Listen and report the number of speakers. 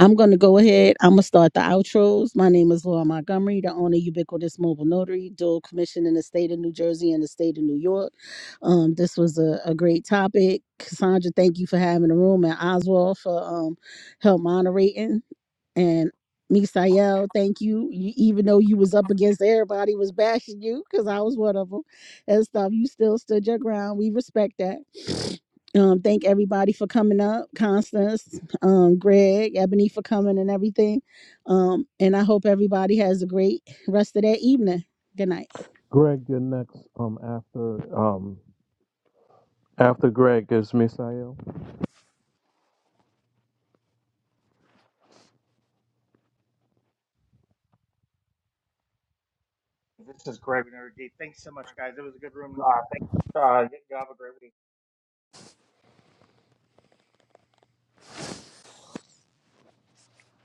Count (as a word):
three